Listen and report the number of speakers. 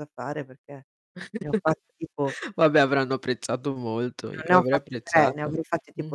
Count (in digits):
2